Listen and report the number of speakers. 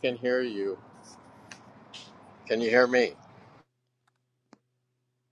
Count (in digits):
1